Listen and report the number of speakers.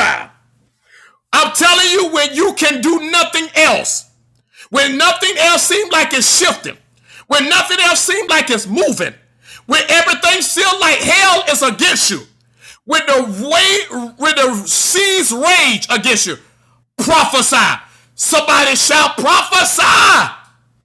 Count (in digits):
1